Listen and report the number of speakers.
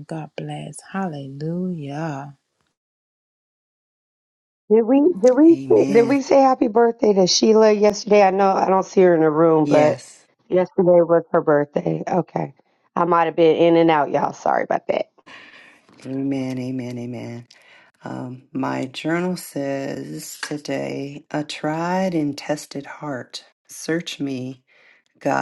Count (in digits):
3